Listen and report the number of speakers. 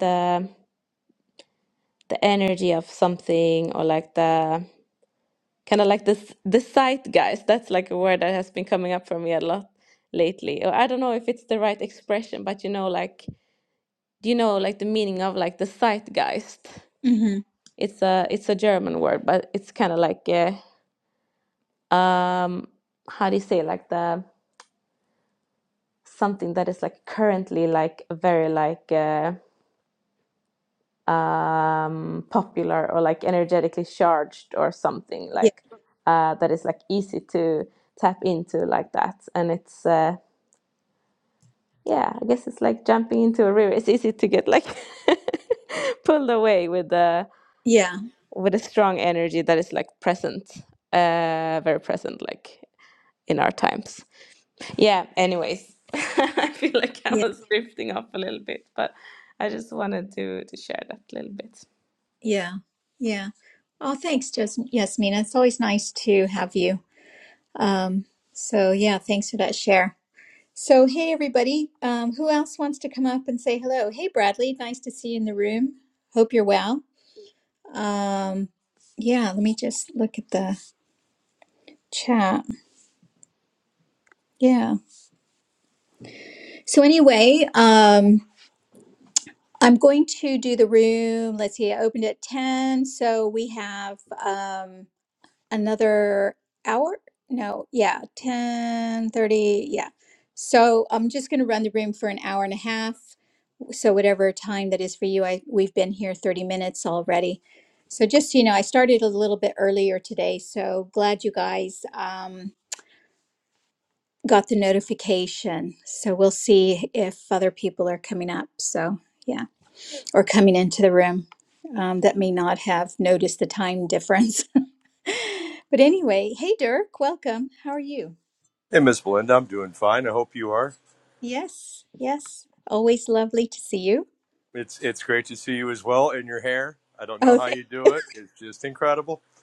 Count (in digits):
3